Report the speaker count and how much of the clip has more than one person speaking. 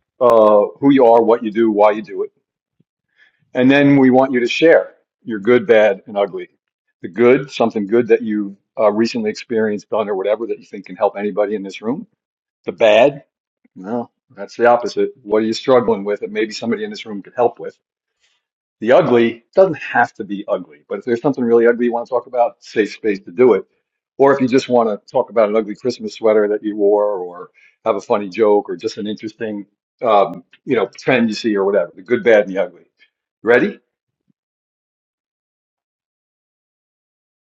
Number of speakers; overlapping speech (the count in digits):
1, no overlap